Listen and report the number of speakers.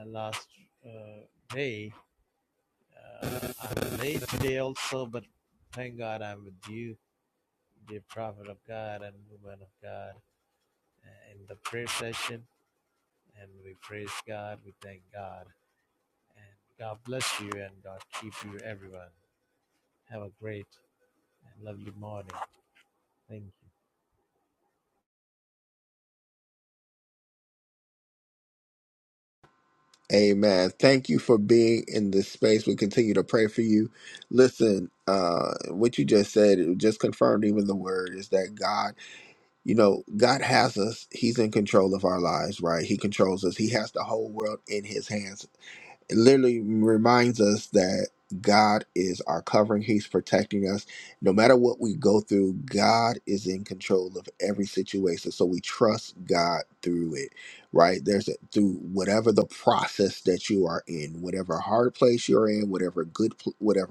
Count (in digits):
2